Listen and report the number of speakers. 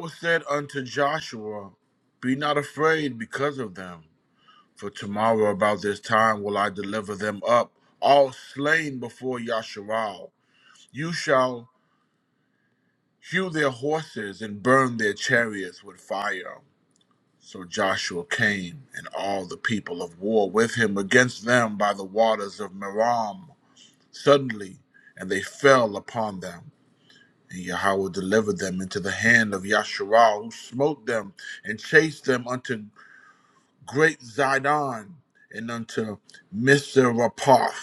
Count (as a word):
one